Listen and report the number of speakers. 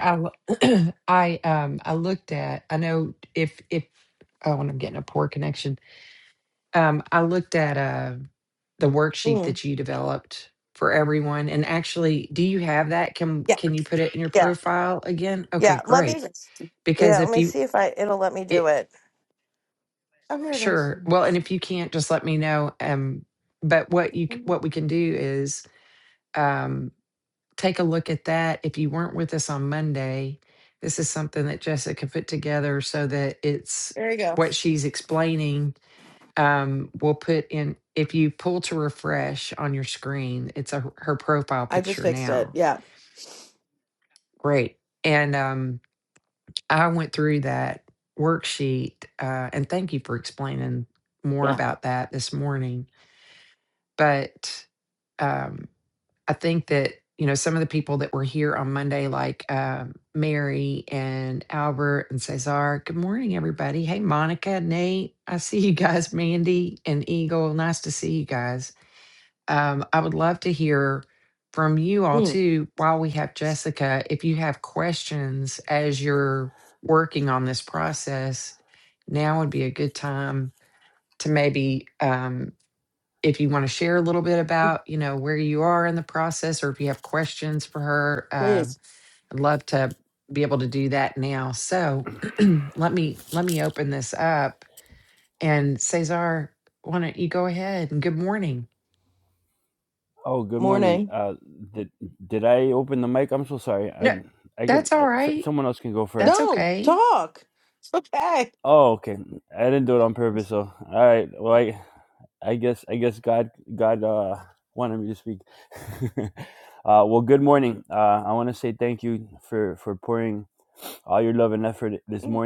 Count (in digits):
3